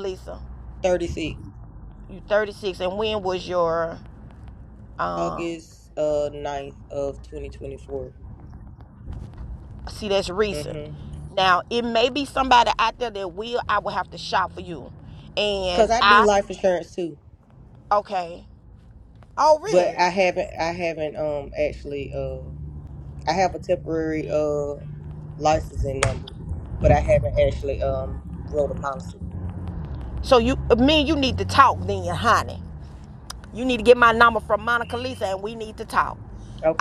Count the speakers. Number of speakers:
2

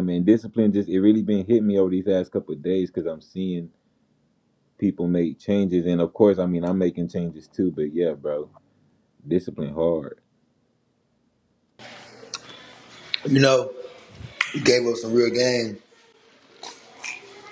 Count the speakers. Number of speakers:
2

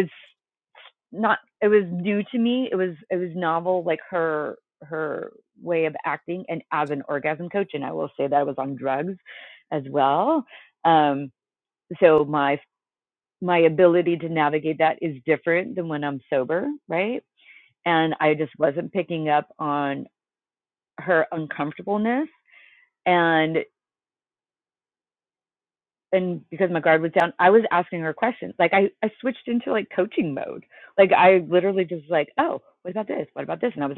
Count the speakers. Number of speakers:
1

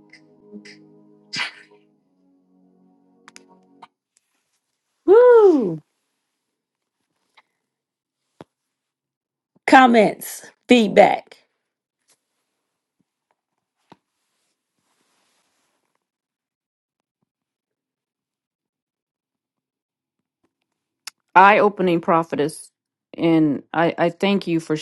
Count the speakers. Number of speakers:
2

